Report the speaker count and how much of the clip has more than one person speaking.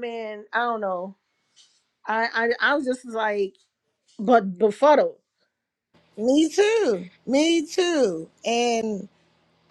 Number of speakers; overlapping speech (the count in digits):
2, no overlap